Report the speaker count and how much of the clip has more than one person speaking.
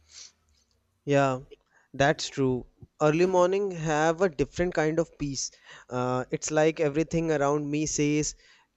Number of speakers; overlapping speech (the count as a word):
one, no overlap